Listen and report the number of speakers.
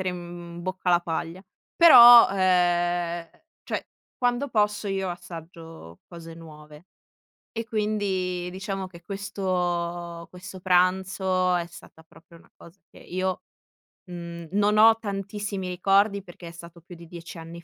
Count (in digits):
1